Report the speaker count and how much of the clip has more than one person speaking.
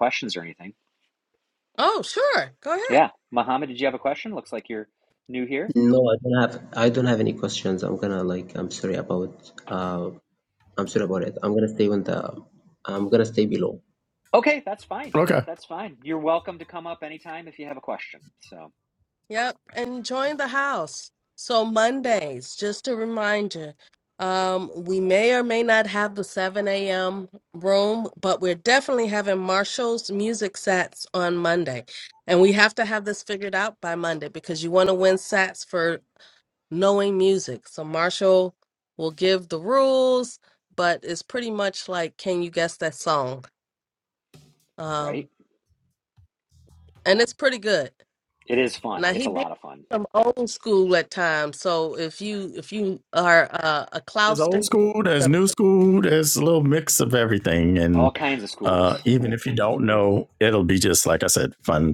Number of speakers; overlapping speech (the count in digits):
4, about 4%